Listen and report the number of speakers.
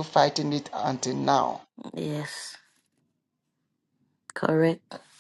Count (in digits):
2